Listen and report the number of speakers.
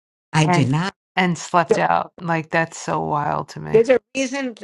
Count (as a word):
two